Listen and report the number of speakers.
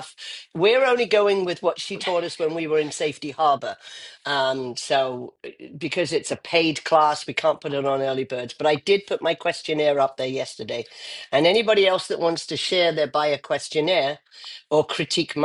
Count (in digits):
1